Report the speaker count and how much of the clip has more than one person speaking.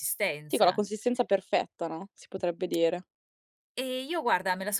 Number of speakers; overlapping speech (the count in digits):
2, about 5%